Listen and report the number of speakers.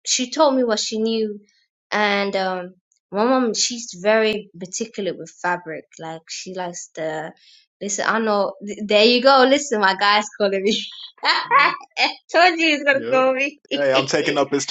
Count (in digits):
2